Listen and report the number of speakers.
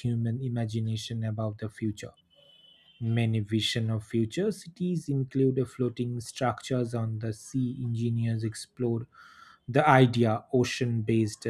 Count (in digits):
1